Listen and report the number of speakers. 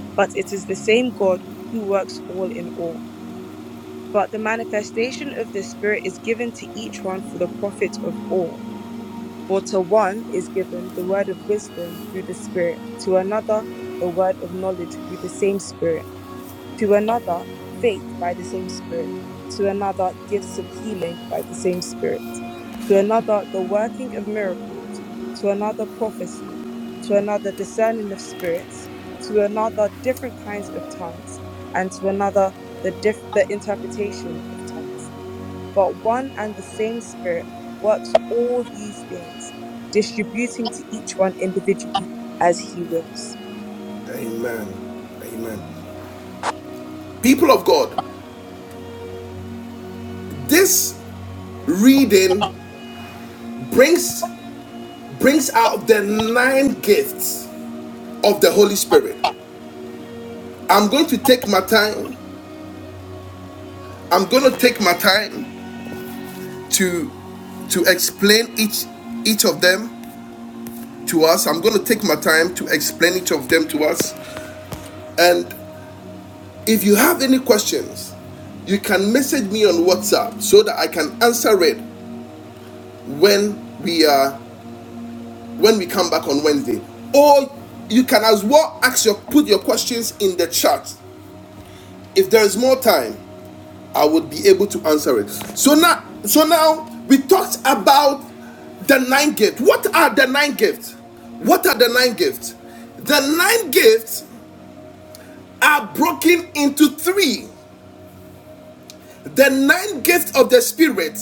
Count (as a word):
two